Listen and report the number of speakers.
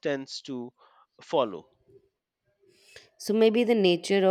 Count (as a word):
two